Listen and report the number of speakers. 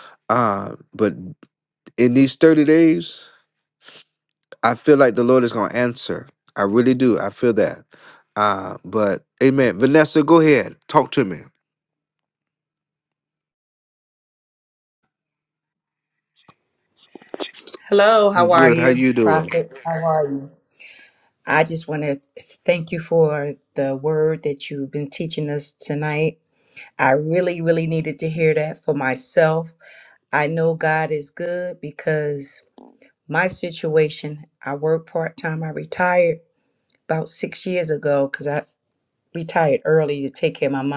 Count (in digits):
2